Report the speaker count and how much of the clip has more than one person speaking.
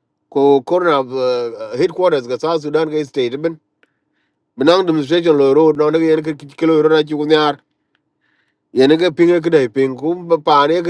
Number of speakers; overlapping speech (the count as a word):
one, no overlap